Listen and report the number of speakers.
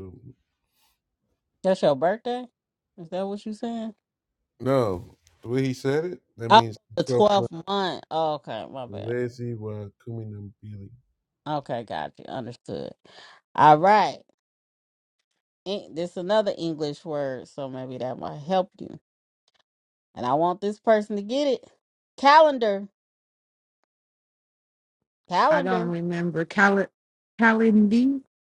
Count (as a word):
three